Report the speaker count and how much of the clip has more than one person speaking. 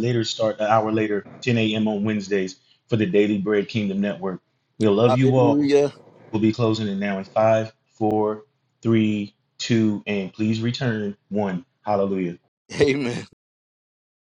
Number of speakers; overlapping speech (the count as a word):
two, about 5%